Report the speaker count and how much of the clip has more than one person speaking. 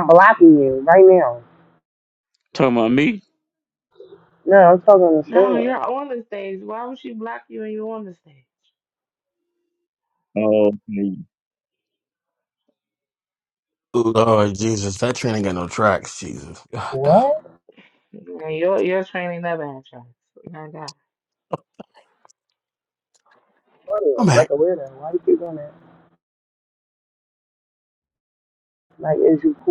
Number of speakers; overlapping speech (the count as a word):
four, about 3%